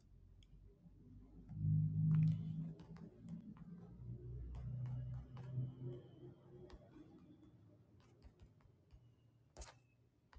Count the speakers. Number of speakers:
0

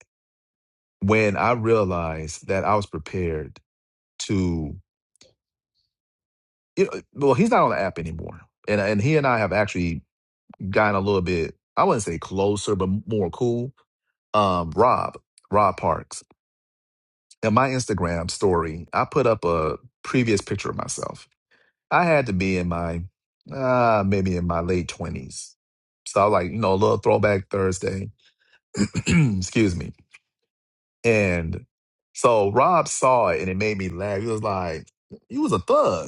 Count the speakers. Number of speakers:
1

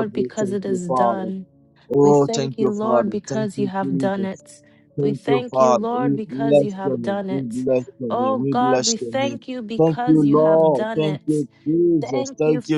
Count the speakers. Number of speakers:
2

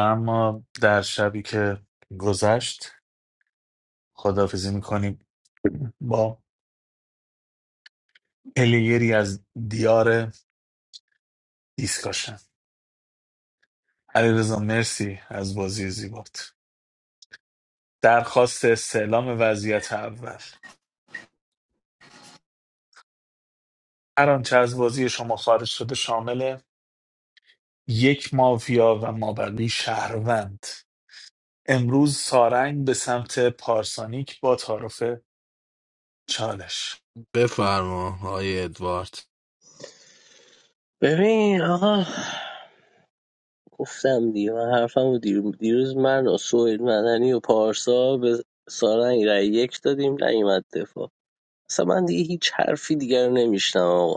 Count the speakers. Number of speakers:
3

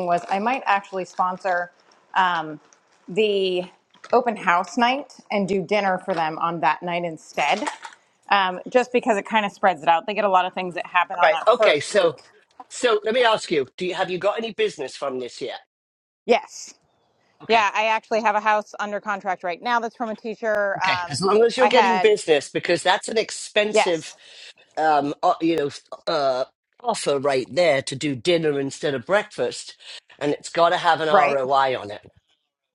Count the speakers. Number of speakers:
2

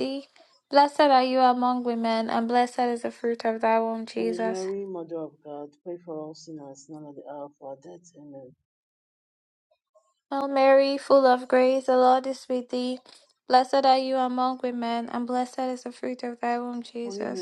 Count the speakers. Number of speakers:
2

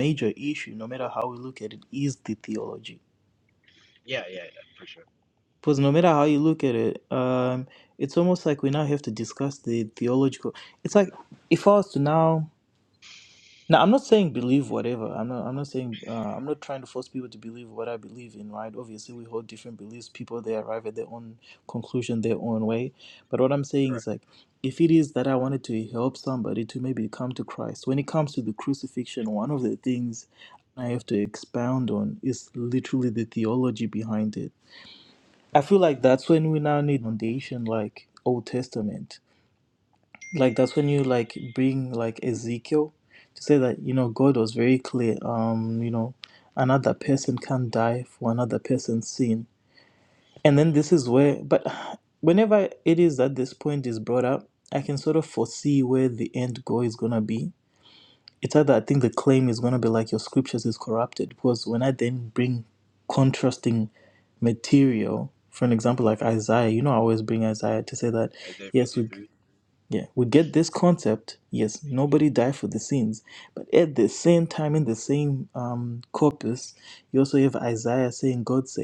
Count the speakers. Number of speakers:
2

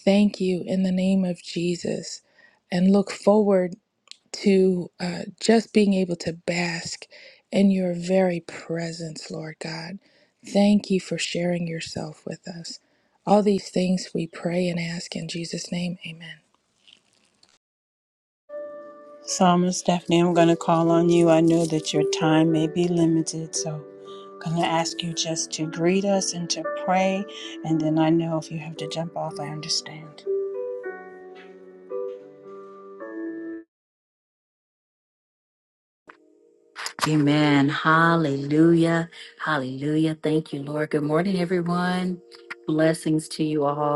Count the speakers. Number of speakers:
3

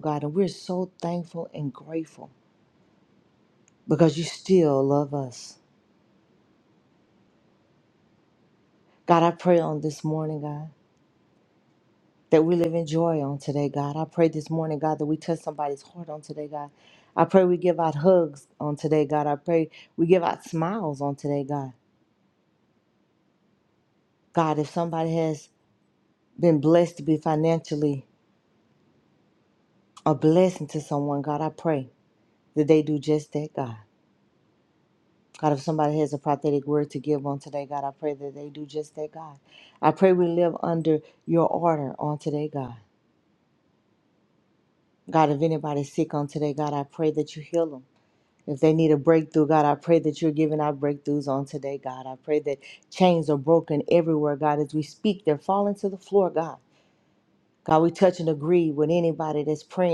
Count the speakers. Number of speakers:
1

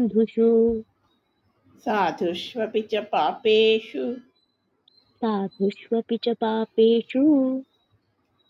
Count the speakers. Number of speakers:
2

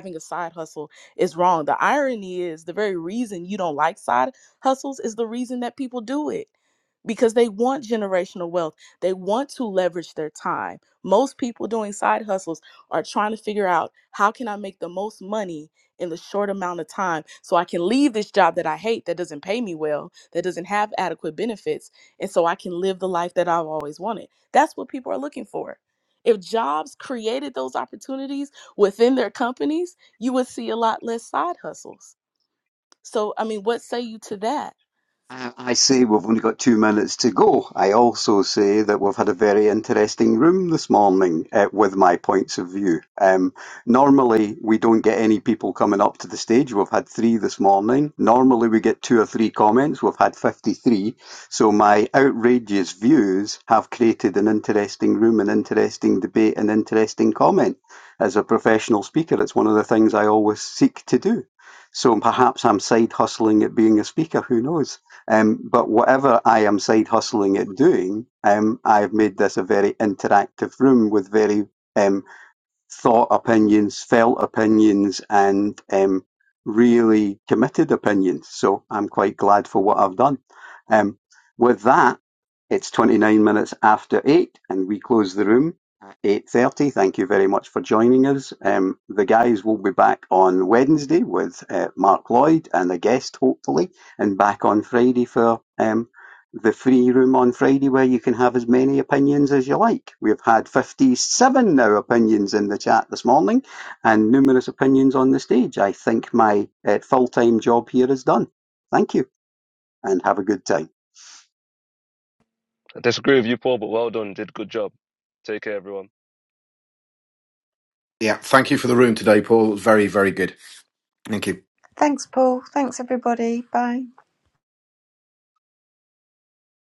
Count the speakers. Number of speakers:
5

